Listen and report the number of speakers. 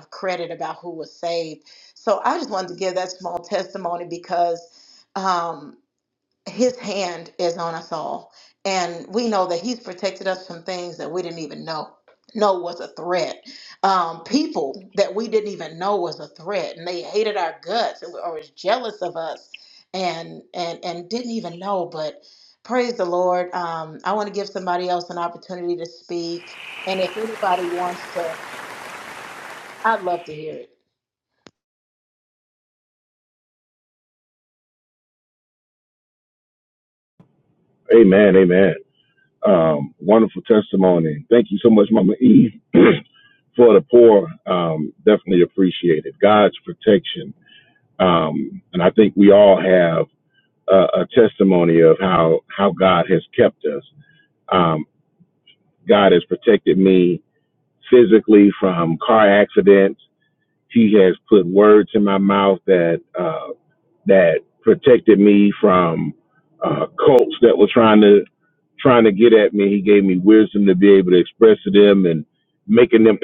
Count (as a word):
two